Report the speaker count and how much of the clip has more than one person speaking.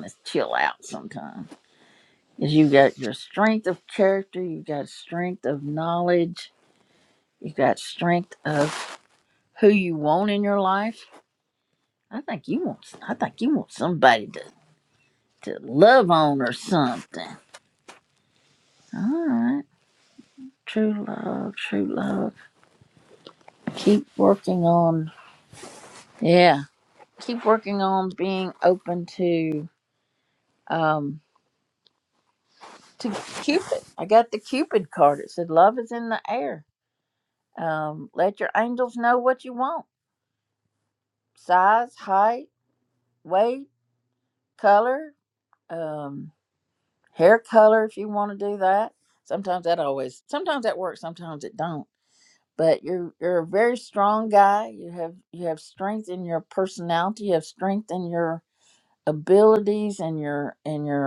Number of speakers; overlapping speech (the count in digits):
1, no overlap